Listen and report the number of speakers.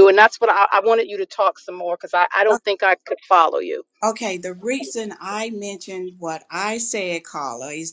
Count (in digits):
2